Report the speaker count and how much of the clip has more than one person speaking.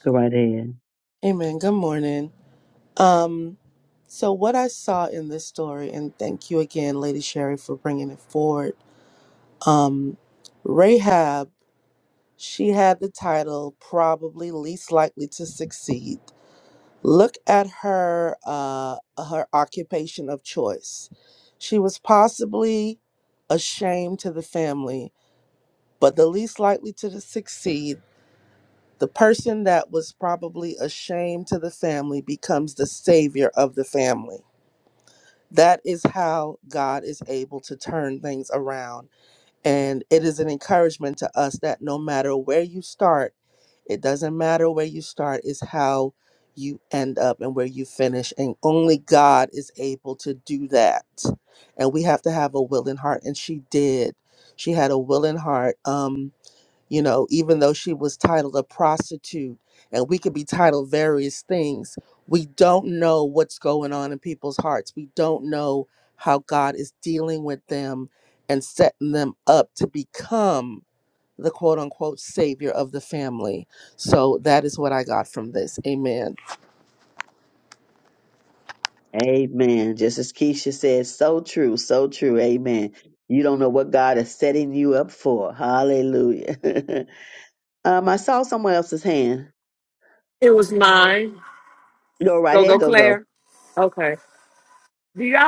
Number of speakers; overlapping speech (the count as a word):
three, about 1%